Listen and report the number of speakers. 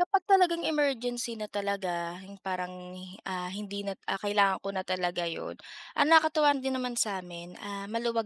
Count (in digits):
1